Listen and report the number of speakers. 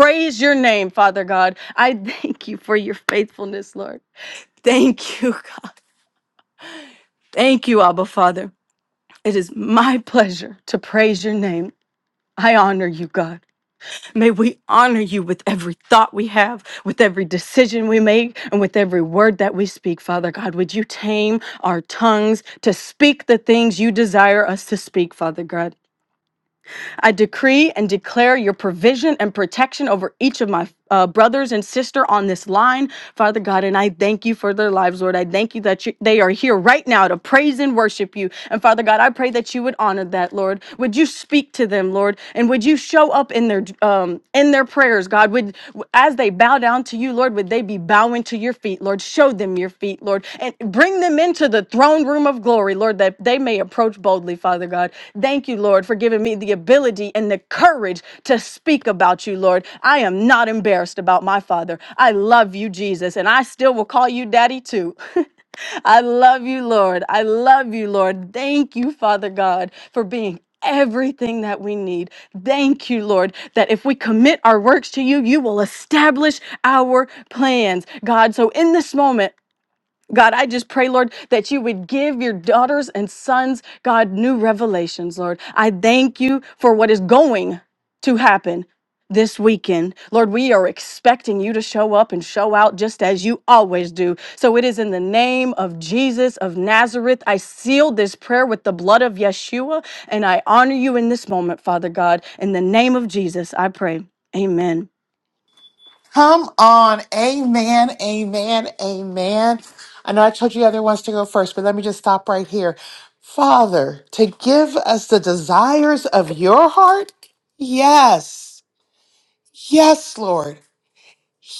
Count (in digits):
2